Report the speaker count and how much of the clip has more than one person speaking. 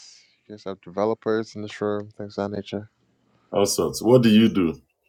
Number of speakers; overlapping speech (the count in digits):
2, no overlap